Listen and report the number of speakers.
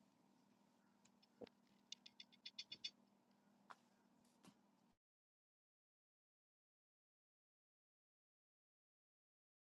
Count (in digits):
0